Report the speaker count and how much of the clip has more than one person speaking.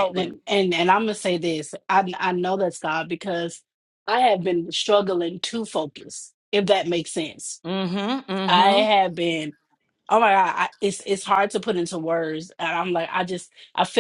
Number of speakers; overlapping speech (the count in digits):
2, about 5%